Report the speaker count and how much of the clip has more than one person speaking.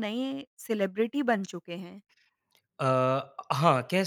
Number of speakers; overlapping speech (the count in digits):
2, no overlap